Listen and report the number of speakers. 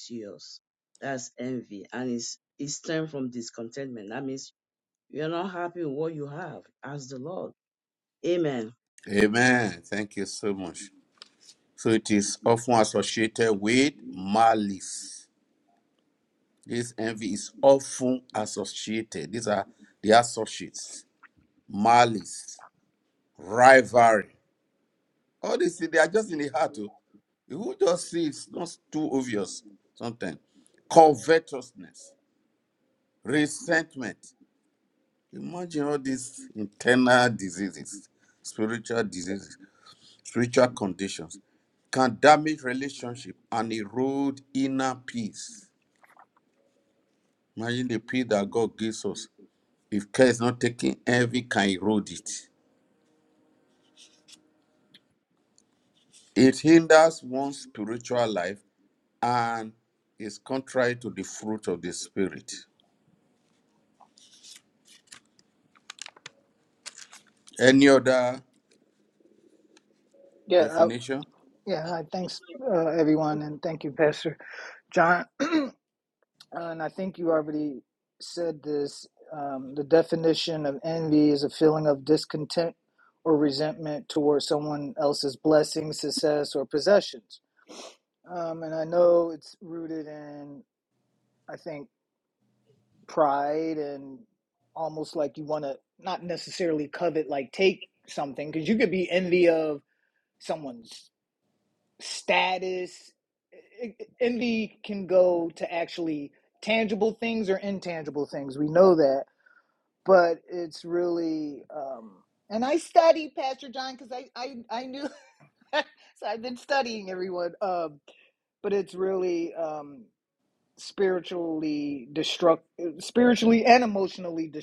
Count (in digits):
3